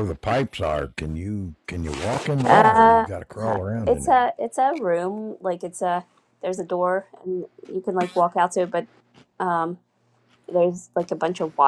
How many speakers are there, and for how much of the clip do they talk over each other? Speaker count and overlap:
2, about 13%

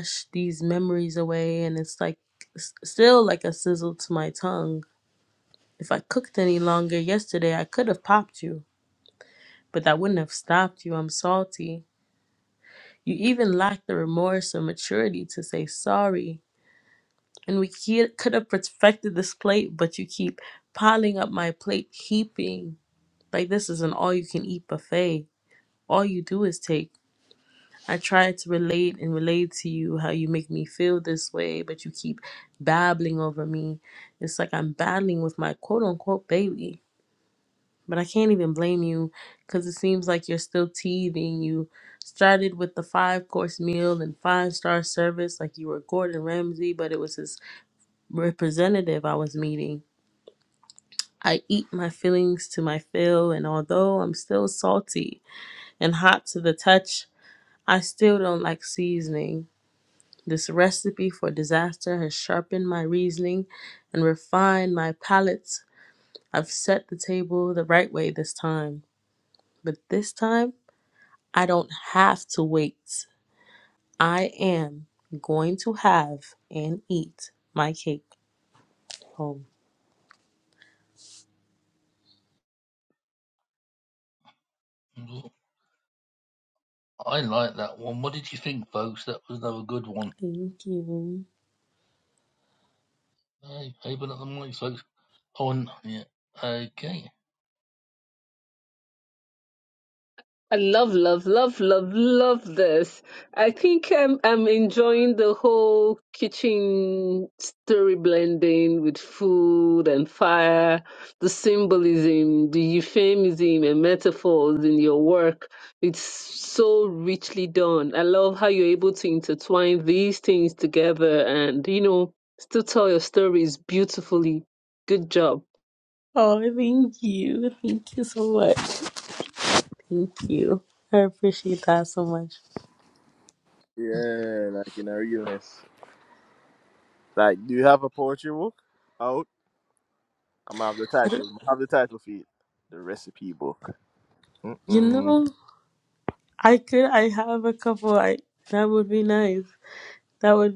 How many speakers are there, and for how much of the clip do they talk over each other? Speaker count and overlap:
4, under 1%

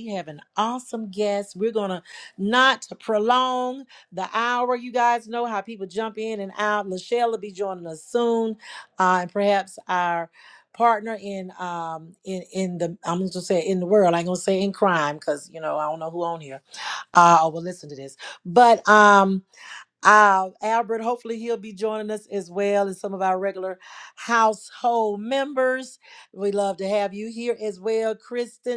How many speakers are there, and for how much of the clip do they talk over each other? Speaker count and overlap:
1, no overlap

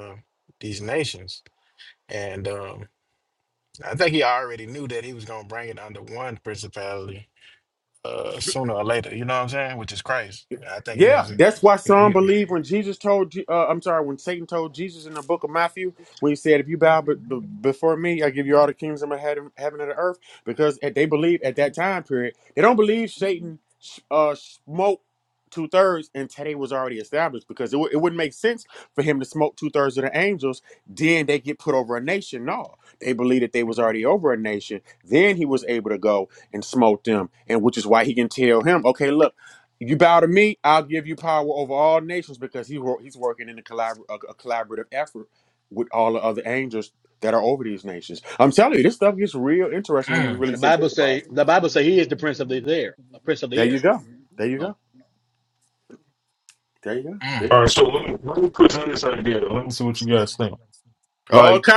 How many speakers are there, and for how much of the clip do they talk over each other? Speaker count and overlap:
4, about 5%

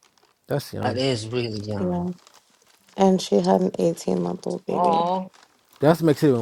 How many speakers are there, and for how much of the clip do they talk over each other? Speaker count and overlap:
3, about 10%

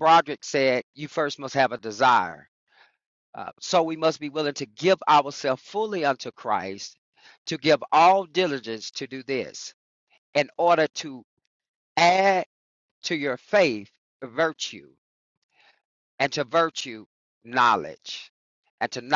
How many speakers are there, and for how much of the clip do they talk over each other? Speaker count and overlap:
1, no overlap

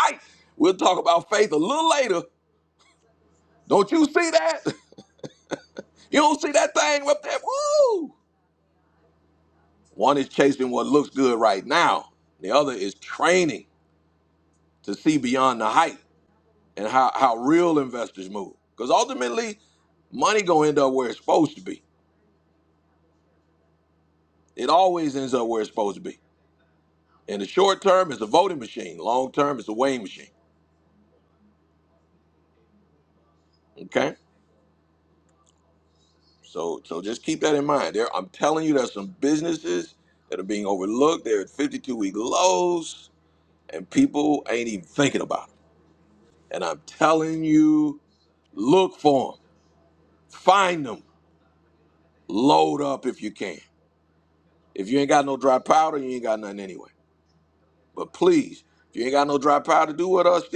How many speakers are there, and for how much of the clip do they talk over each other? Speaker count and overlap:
1, no overlap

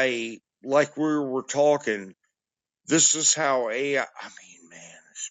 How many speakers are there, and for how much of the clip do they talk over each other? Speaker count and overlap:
1, no overlap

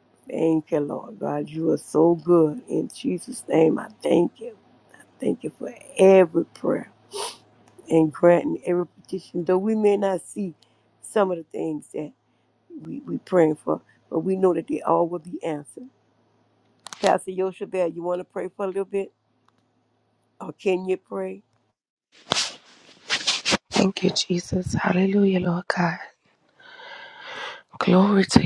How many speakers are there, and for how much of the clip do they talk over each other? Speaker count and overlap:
2, no overlap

